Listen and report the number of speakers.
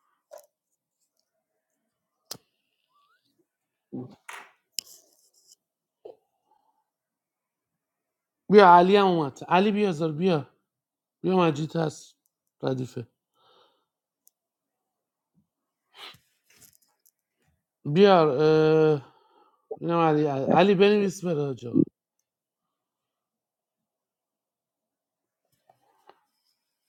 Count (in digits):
1